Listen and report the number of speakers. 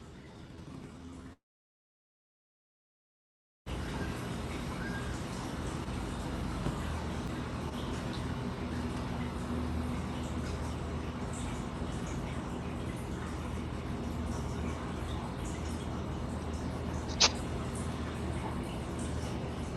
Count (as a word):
zero